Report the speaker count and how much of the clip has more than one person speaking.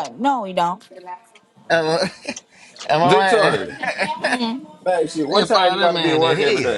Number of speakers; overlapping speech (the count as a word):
three, about 33%